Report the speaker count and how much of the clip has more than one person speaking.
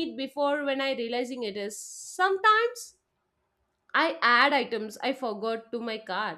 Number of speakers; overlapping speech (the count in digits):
1, no overlap